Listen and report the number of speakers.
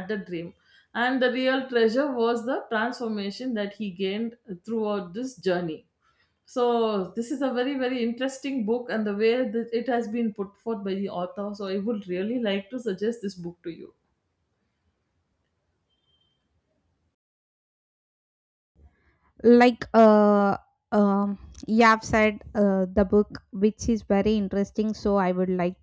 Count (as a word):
two